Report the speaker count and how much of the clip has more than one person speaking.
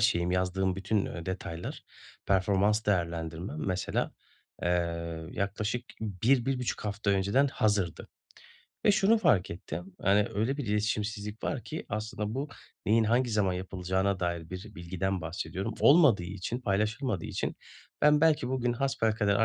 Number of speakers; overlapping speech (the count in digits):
1, no overlap